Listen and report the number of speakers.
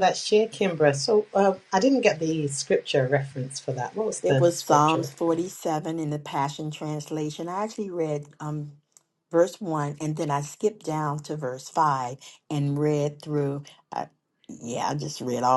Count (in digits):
2